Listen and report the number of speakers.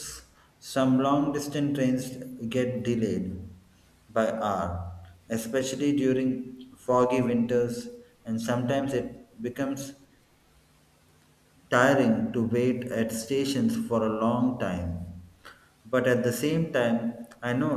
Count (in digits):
1